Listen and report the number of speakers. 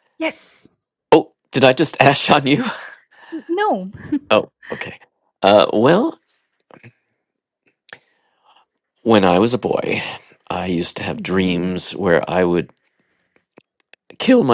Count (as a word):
two